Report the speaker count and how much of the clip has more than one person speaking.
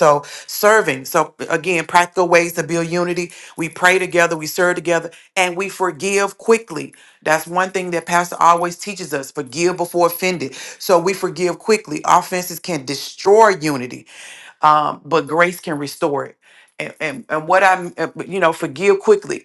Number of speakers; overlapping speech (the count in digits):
1, no overlap